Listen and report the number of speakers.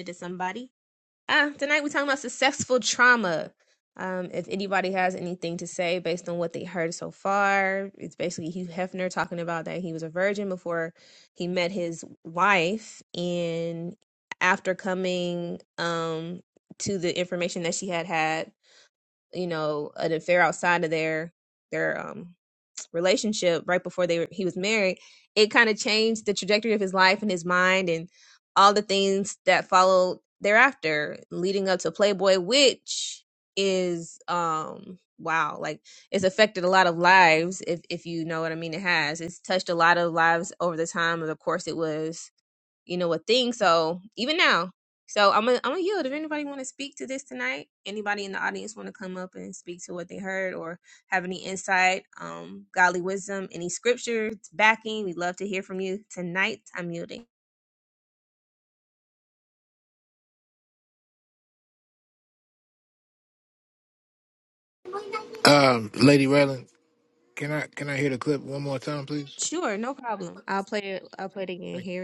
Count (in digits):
2